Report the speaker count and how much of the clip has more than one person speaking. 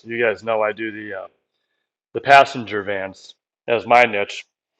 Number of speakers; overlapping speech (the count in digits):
1, no overlap